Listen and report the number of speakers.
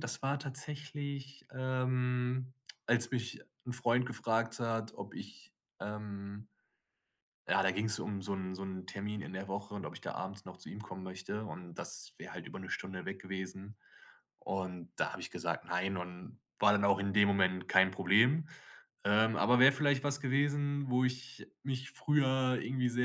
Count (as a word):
one